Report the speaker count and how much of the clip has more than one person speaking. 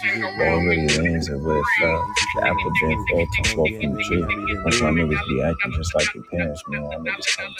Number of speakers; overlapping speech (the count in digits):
2, about 62%